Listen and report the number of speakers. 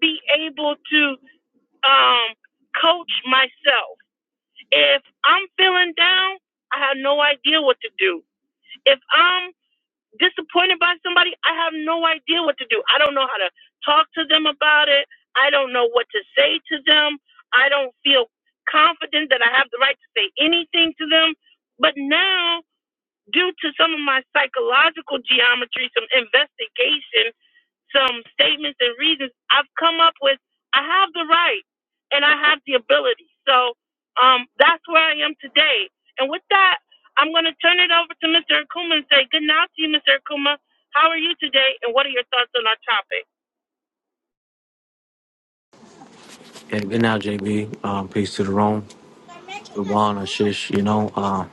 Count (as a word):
two